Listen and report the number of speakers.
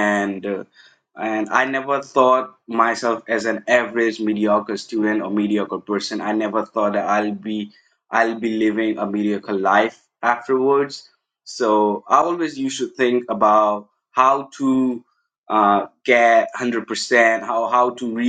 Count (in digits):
1